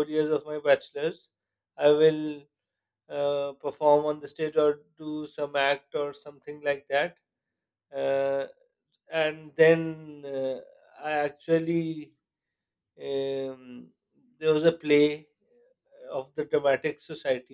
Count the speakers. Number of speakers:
1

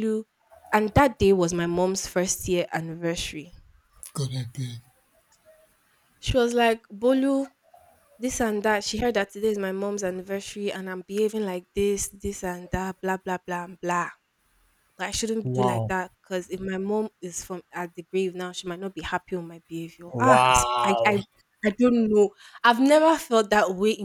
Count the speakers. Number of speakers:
2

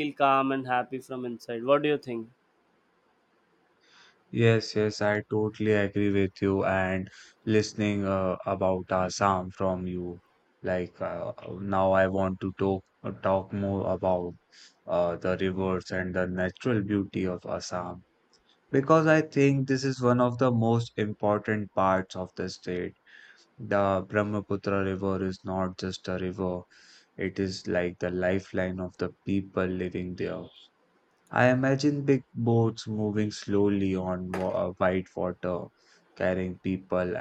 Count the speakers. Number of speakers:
2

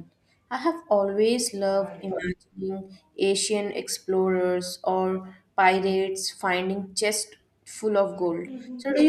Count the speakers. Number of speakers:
1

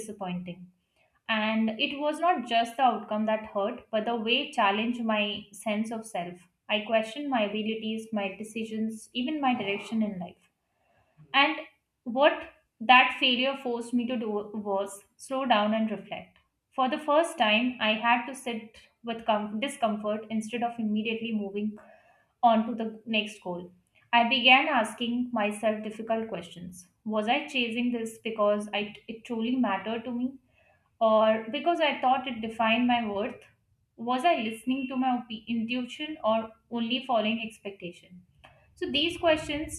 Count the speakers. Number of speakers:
1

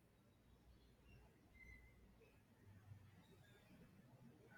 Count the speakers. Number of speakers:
0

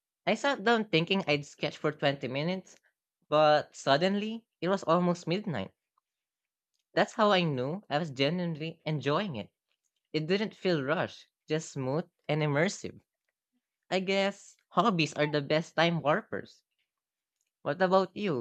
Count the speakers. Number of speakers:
1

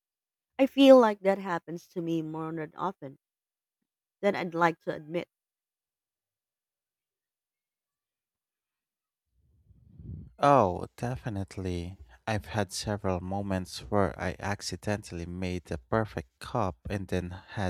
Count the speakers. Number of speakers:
2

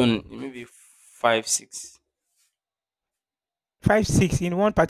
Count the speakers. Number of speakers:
2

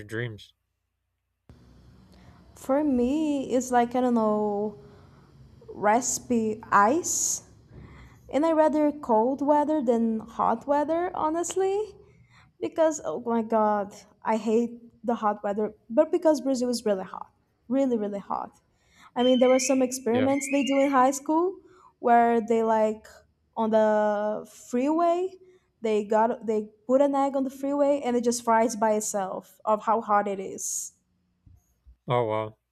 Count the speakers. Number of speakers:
2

